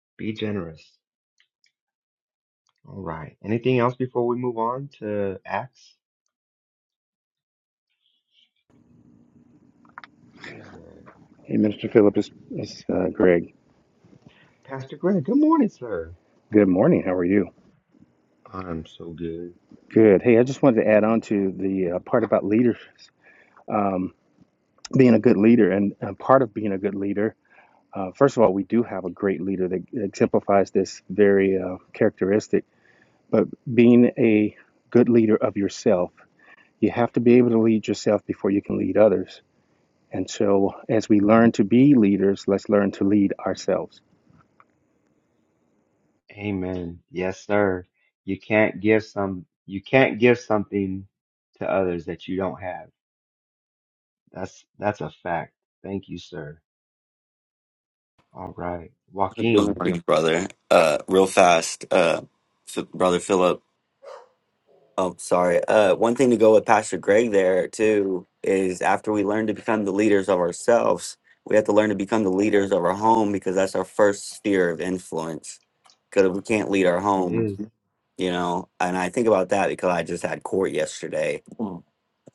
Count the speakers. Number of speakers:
three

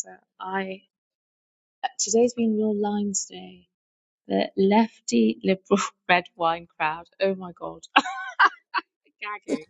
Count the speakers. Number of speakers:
one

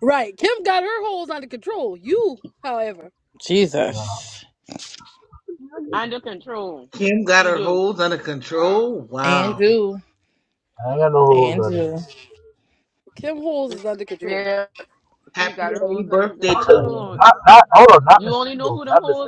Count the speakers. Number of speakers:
five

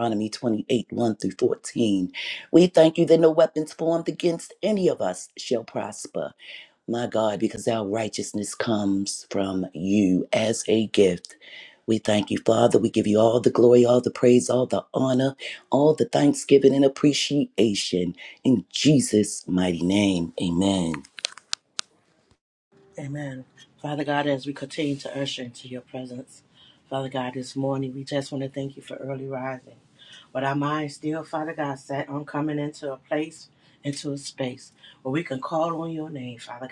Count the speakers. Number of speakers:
two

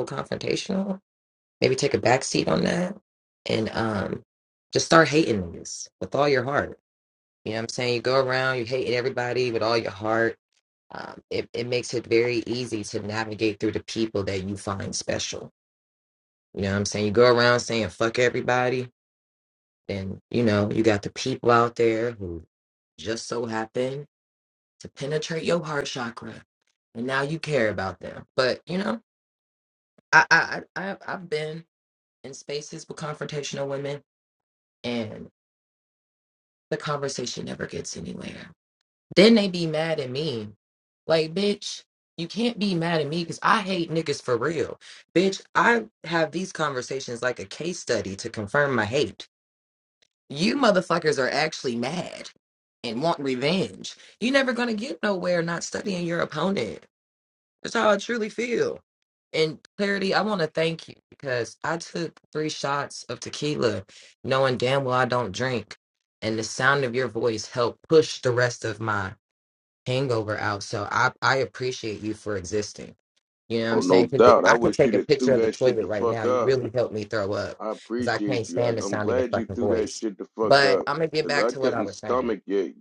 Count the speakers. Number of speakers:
two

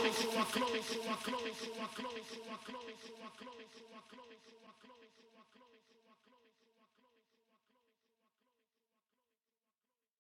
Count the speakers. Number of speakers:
zero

